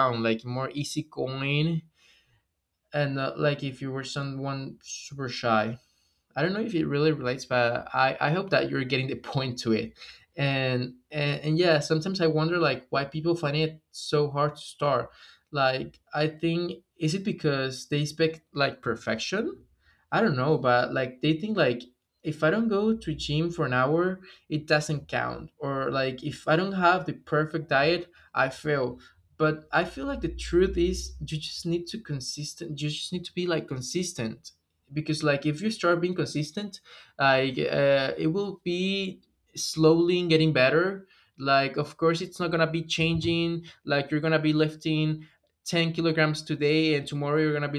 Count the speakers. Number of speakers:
1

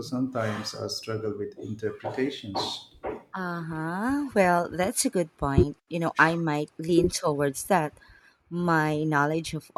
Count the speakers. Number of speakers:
2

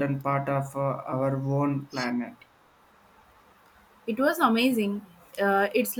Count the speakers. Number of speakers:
2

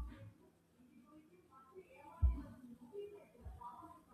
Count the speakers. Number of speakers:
0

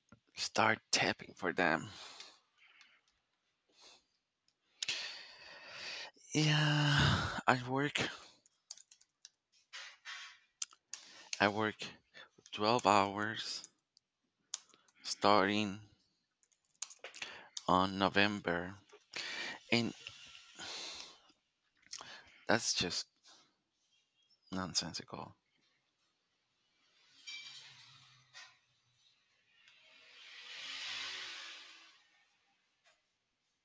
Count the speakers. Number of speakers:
1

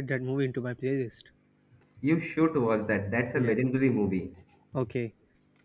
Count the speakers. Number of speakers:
2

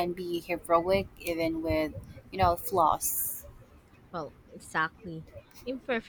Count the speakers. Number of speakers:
2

